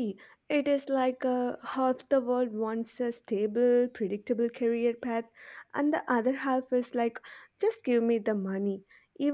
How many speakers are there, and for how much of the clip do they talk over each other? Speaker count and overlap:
one, no overlap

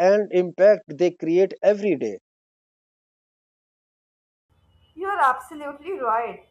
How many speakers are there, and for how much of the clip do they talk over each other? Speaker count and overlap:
two, no overlap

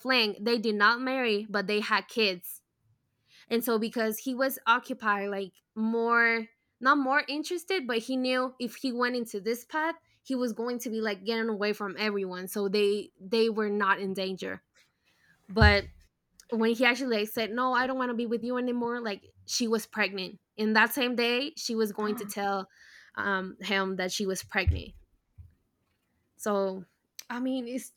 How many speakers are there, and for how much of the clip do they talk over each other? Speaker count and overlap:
one, no overlap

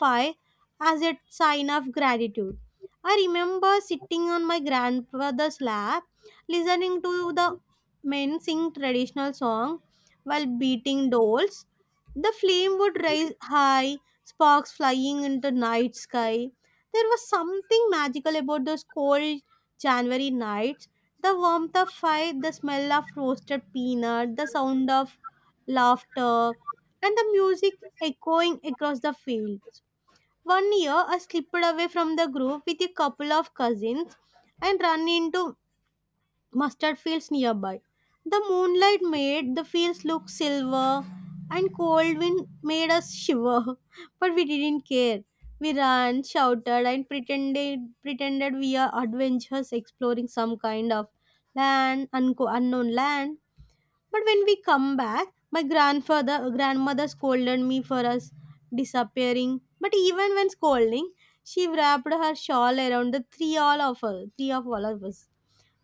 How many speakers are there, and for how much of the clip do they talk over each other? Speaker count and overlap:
one, no overlap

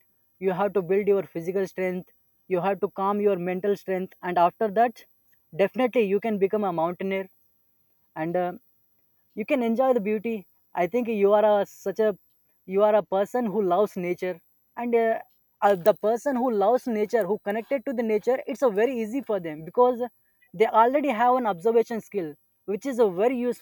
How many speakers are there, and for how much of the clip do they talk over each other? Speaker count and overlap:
one, no overlap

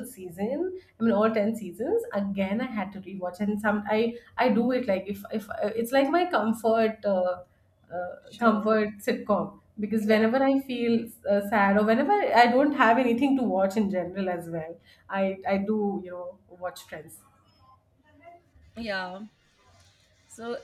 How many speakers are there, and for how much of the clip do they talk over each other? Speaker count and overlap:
two, about 3%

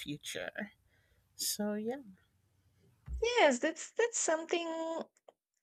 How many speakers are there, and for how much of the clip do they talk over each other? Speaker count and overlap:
two, no overlap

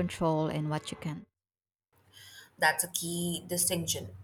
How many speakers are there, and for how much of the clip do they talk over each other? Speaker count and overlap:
two, no overlap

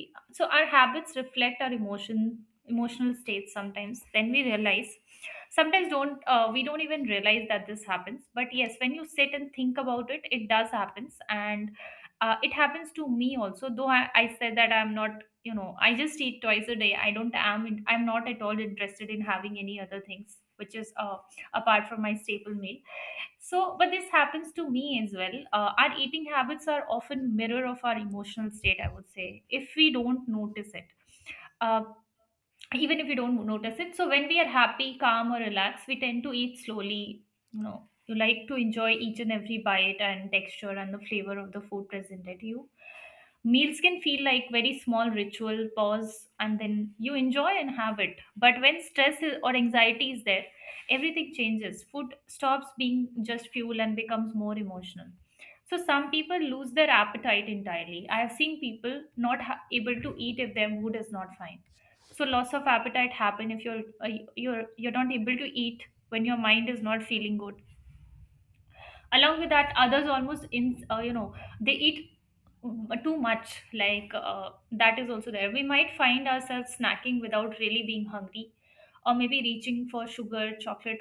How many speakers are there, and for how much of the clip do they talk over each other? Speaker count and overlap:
one, no overlap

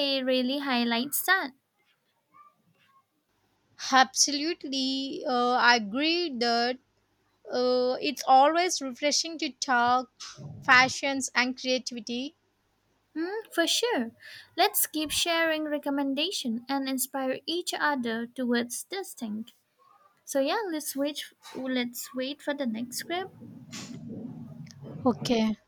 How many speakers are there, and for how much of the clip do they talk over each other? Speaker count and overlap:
two, no overlap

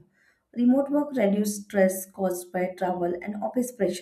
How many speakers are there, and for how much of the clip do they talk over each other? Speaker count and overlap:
one, no overlap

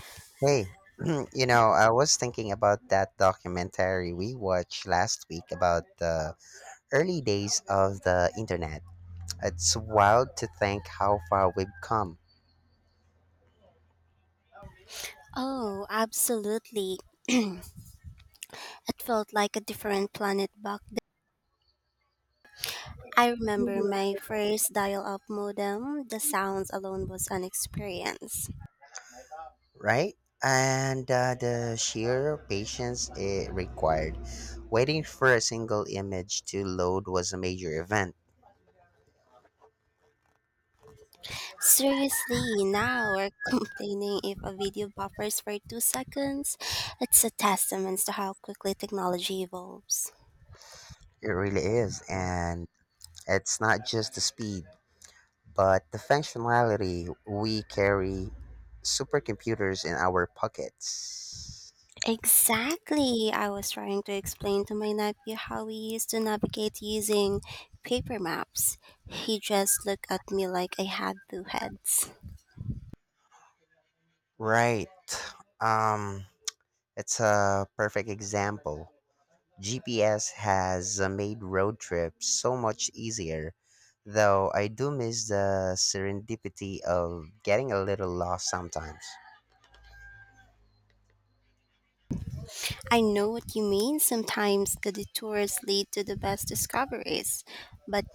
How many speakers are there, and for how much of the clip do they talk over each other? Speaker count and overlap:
two, no overlap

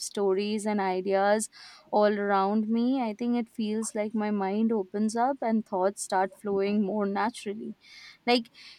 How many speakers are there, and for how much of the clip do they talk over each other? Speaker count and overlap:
one, no overlap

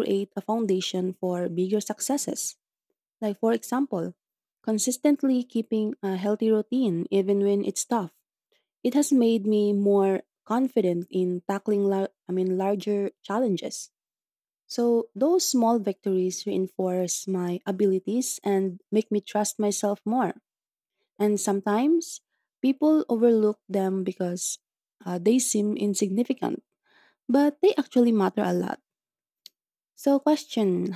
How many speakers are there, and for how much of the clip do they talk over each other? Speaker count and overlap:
one, no overlap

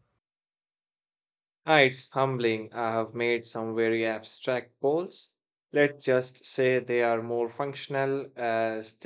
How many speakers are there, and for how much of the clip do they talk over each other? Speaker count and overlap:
one, no overlap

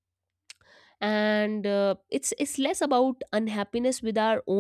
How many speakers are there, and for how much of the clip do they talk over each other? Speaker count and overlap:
one, no overlap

